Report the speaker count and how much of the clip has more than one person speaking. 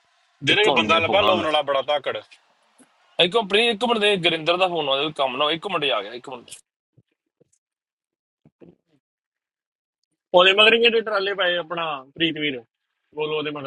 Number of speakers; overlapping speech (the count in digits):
3, about 9%